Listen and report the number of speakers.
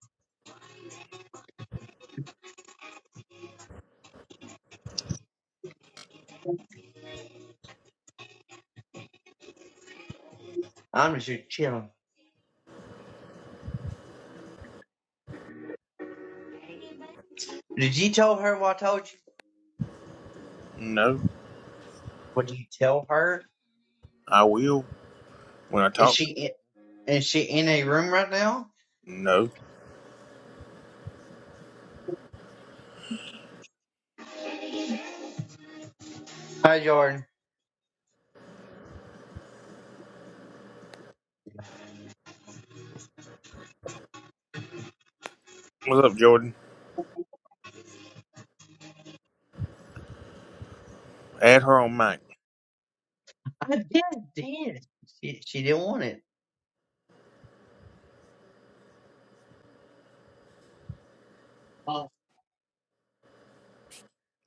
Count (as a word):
two